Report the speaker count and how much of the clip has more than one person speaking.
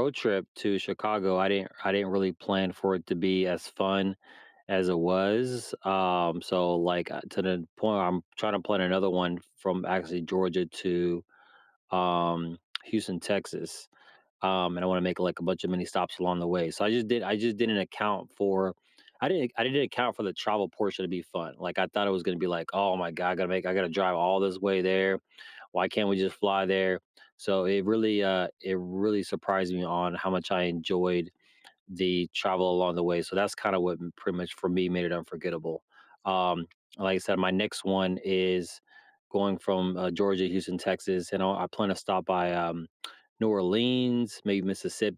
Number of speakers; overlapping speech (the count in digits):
1, no overlap